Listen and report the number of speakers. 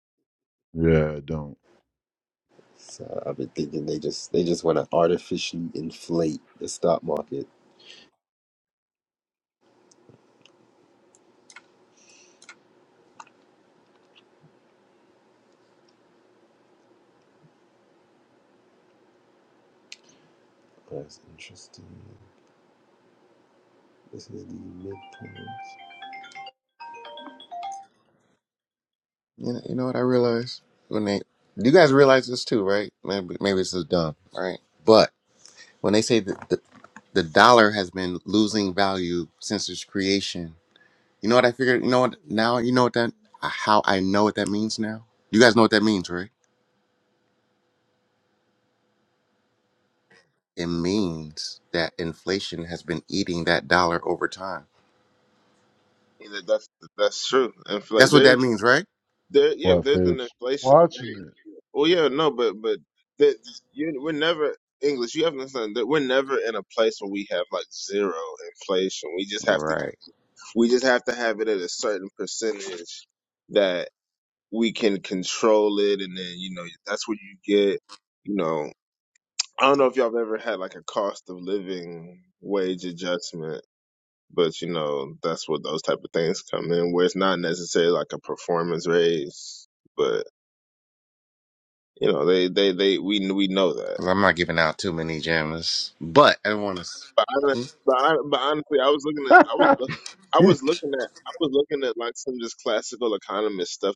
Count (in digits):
4